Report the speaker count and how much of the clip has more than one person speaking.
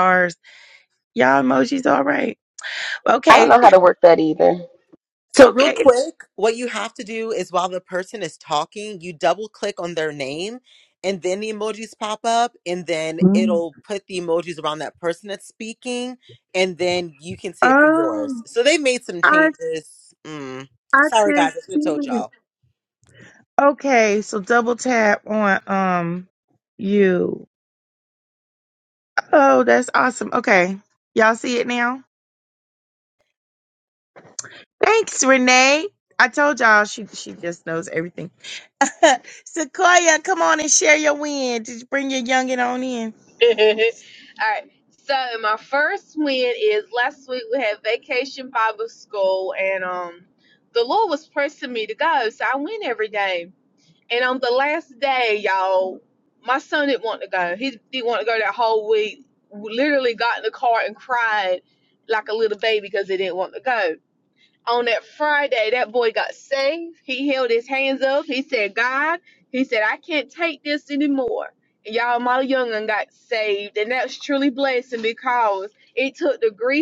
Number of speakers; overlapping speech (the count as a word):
four, about 4%